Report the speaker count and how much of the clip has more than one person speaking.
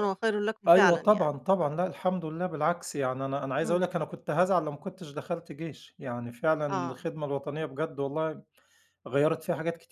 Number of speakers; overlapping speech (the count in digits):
2, about 11%